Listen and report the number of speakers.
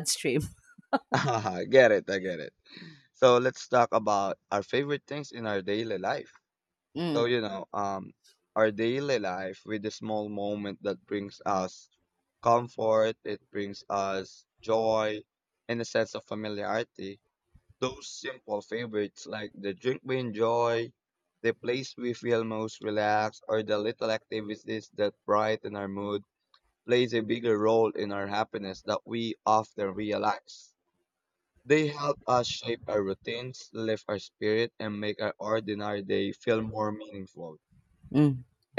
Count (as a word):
two